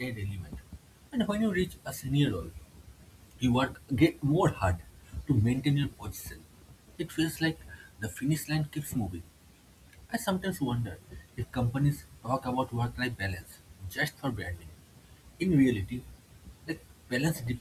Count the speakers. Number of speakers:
one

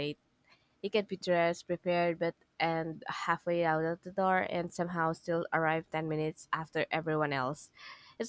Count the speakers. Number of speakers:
one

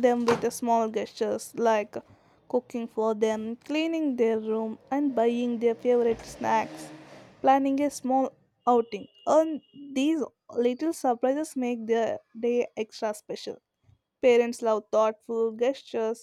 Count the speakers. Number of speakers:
one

